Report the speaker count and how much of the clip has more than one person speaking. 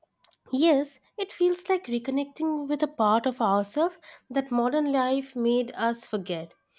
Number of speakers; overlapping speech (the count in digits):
1, no overlap